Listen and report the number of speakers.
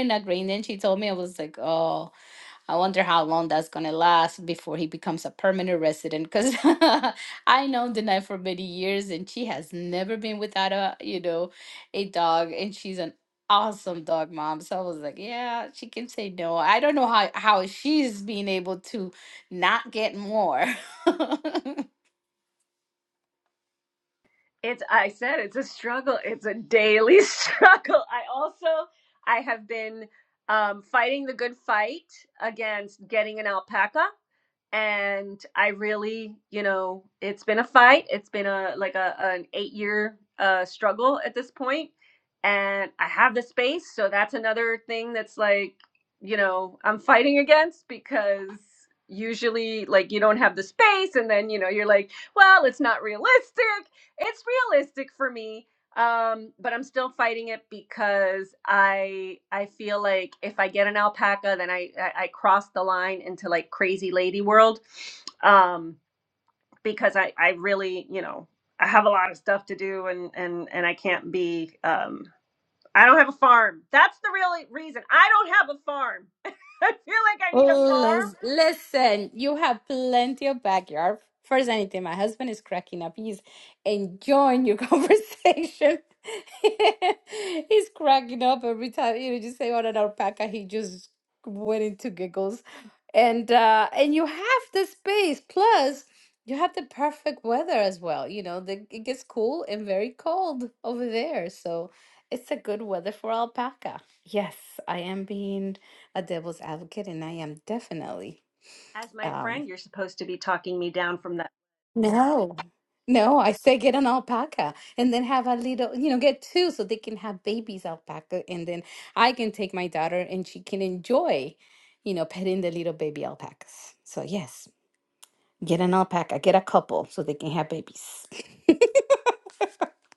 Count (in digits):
2